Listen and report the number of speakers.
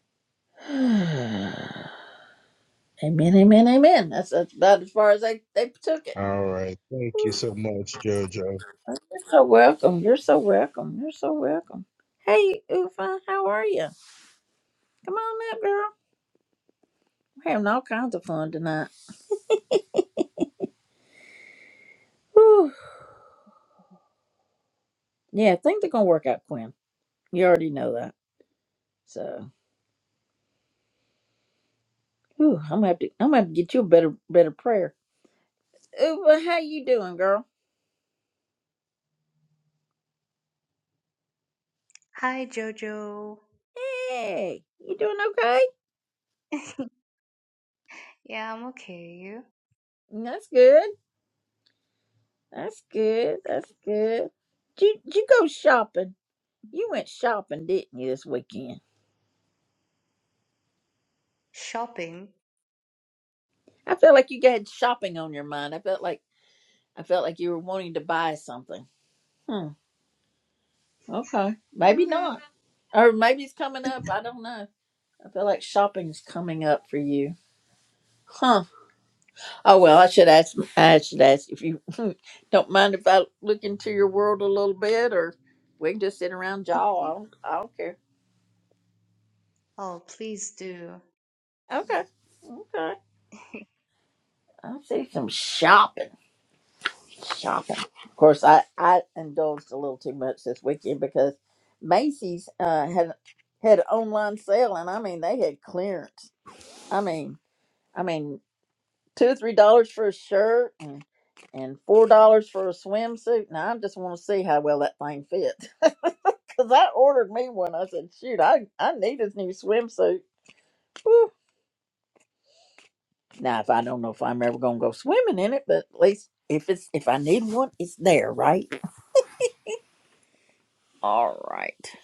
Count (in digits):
3